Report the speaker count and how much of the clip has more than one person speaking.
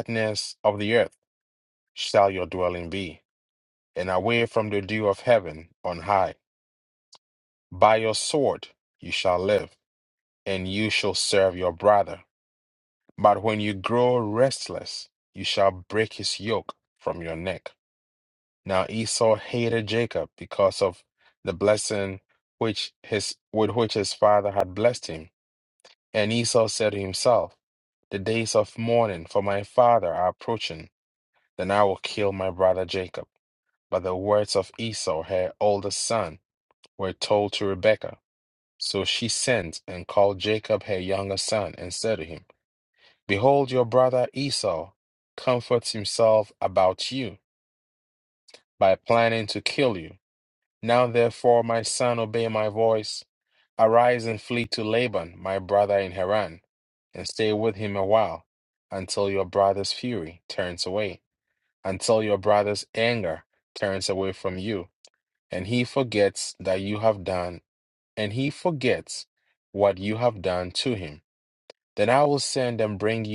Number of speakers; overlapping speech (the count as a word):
one, no overlap